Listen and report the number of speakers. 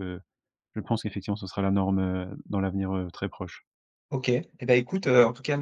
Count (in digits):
2